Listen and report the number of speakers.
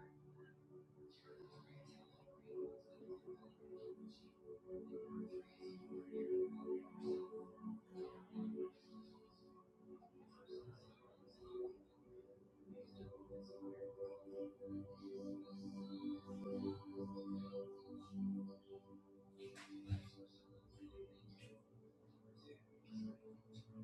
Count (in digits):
0